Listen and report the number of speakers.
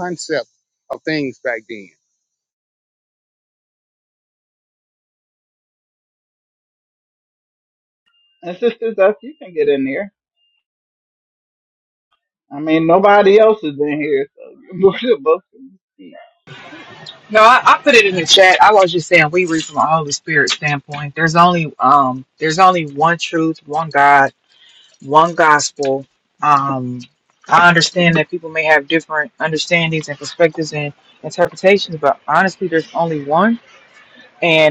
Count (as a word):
three